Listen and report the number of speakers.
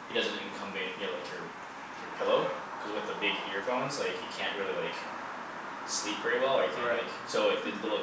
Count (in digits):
1